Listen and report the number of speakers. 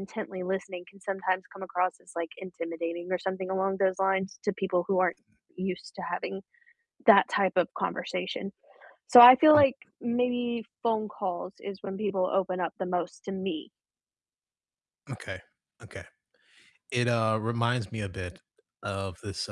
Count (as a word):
two